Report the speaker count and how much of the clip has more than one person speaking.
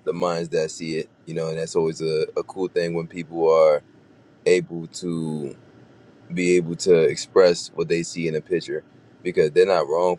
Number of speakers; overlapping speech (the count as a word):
one, no overlap